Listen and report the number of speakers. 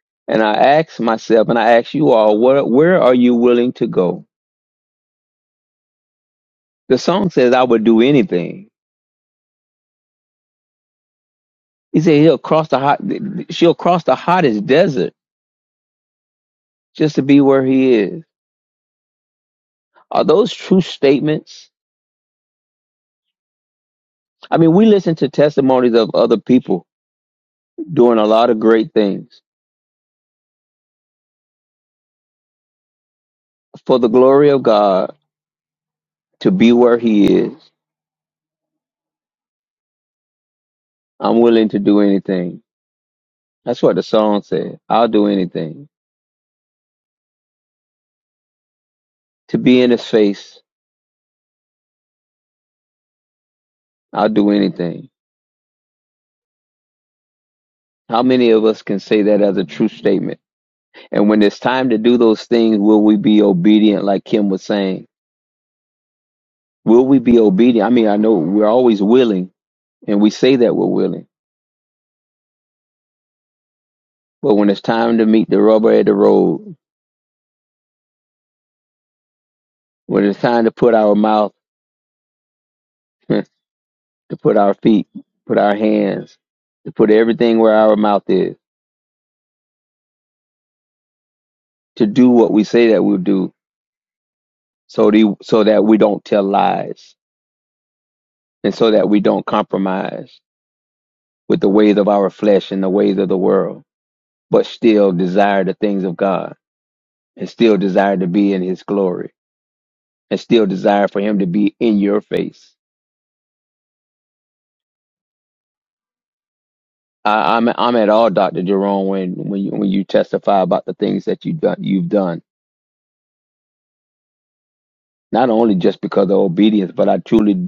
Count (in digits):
1